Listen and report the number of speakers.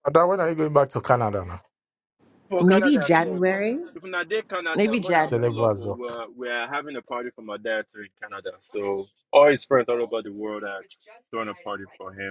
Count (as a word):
three